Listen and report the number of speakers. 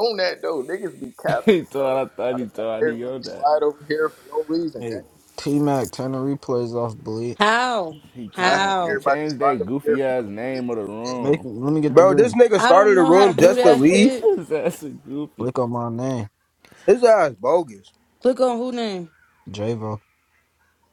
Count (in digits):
5